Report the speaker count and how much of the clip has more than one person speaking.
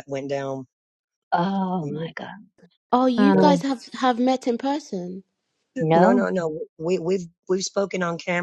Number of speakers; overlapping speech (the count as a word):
three, about 11%